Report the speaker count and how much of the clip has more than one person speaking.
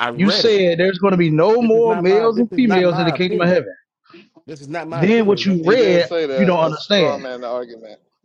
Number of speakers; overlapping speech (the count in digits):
3, about 57%